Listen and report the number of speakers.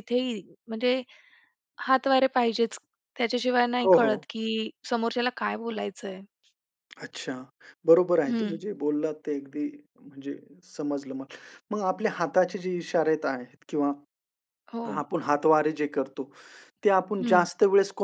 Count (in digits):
2